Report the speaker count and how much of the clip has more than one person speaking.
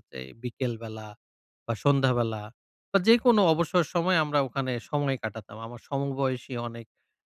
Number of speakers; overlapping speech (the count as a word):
one, no overlap